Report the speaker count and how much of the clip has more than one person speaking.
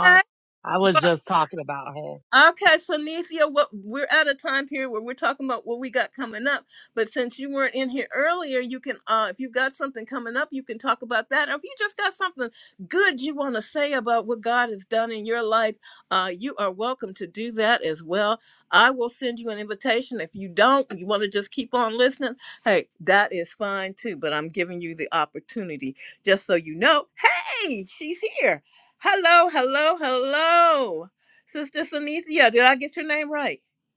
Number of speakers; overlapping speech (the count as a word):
two, under 1%